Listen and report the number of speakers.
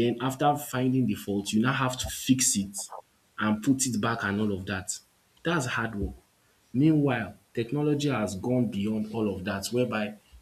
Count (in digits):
1